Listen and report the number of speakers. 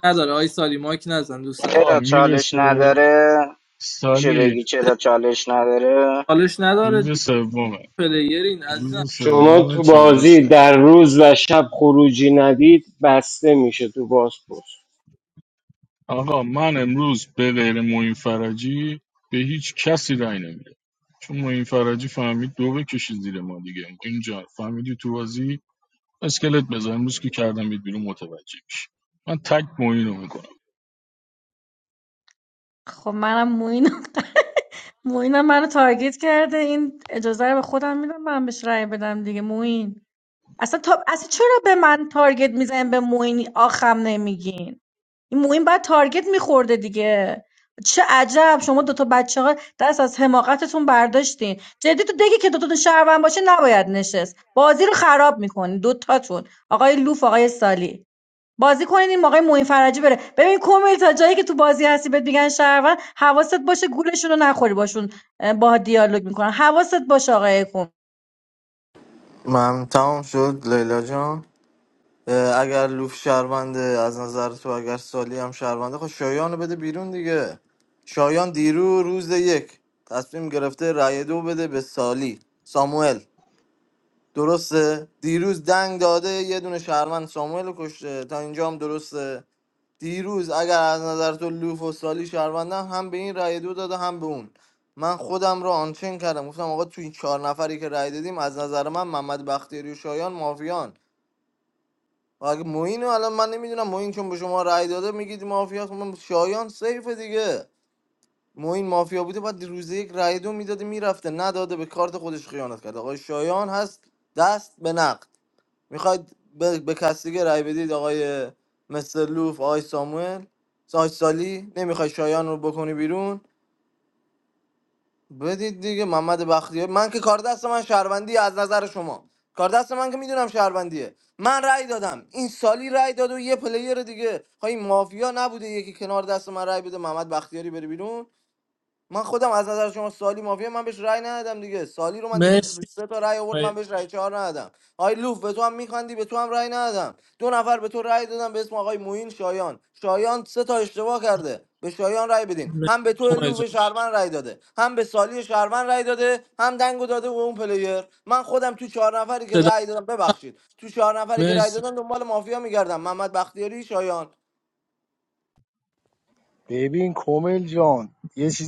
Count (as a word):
seven